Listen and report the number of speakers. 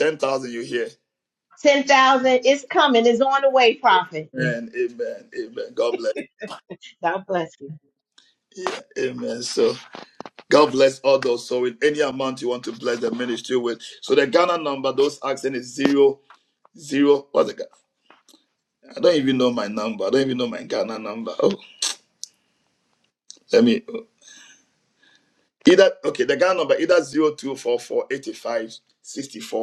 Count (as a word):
two